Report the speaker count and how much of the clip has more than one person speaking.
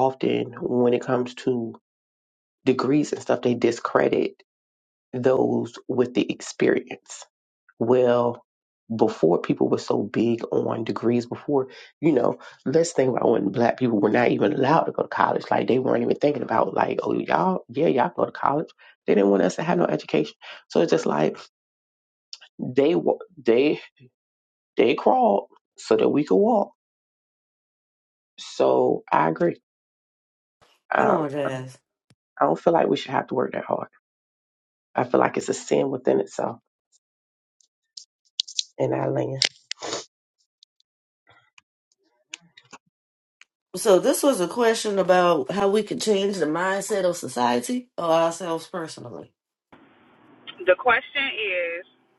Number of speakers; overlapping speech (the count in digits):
3, under 1%